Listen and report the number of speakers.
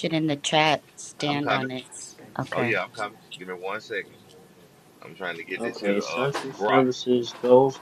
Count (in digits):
3